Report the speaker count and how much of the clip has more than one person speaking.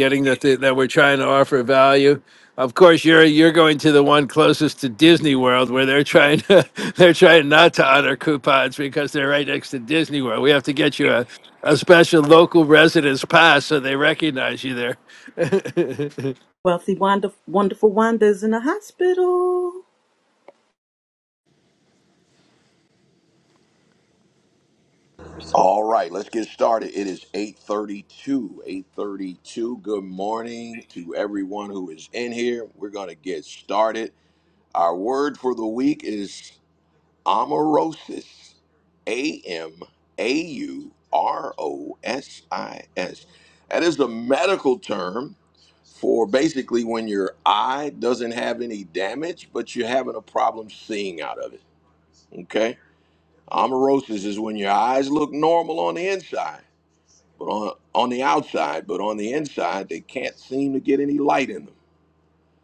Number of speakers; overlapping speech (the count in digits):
3, no overlap